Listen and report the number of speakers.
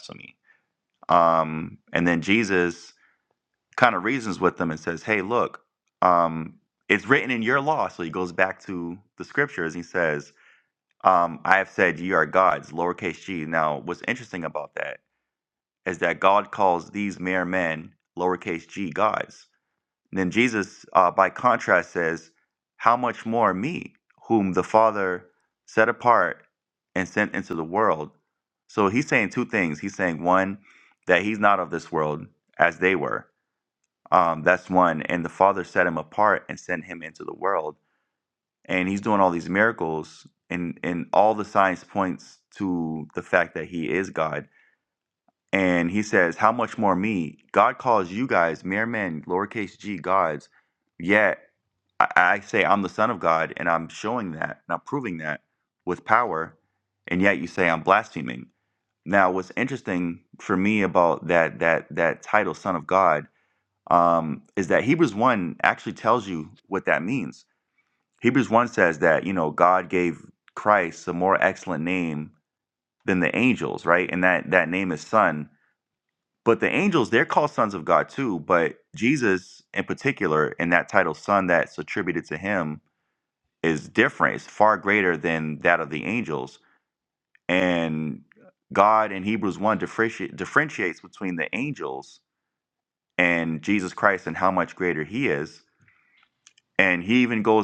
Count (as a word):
one